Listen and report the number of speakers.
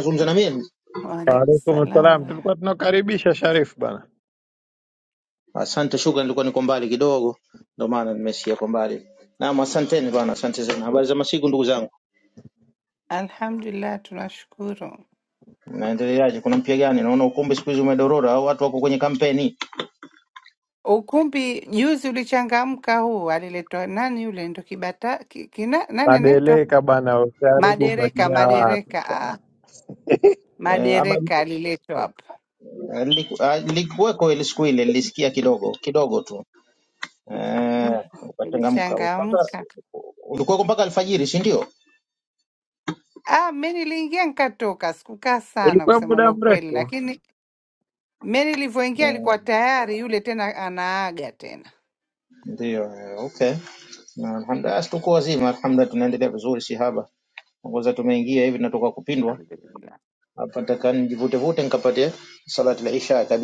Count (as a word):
three